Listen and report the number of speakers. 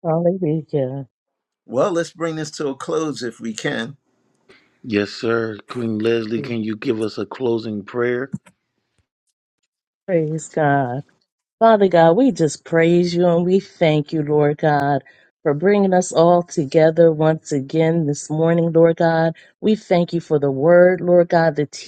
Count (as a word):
three